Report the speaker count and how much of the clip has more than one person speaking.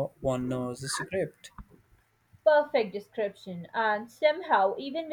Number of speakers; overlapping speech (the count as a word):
two, no overlap